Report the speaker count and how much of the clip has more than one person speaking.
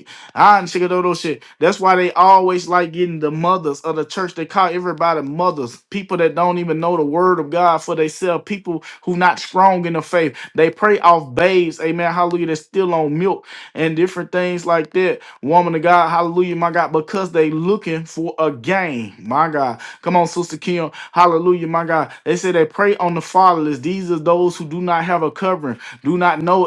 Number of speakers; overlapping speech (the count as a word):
one, no overlap